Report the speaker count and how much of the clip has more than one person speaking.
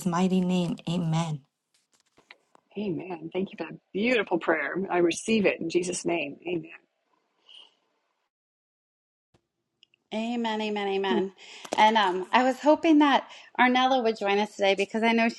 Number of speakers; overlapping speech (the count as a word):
three, no overlap